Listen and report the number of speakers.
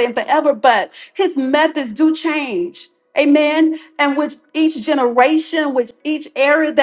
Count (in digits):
1